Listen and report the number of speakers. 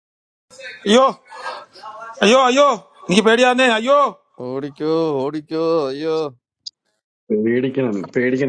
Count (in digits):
3